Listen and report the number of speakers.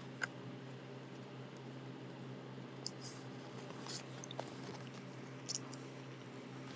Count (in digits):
0